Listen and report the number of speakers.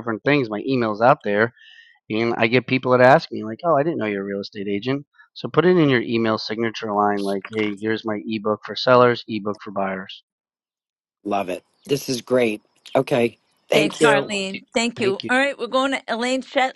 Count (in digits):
3